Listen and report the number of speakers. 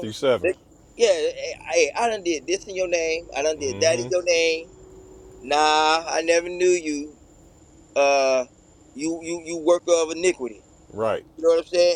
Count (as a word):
two